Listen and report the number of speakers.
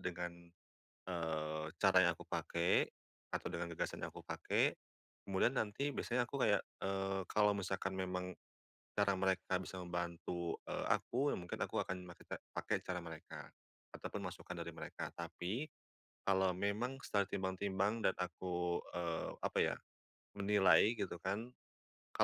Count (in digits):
1